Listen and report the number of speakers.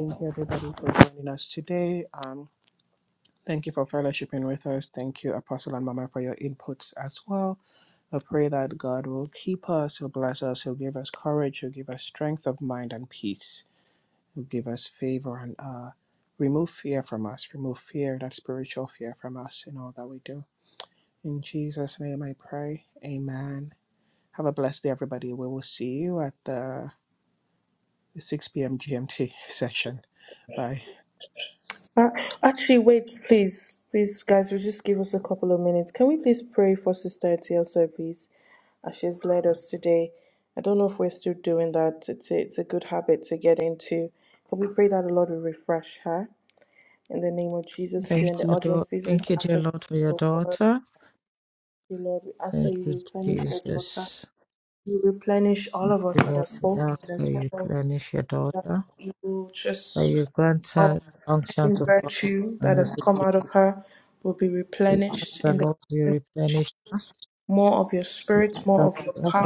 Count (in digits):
3